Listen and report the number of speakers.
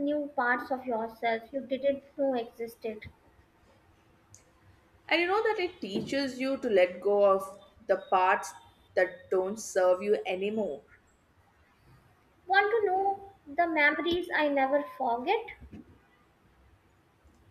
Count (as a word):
two